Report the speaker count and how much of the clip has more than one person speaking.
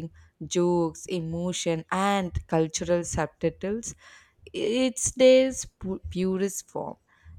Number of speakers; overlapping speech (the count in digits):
1, no overlap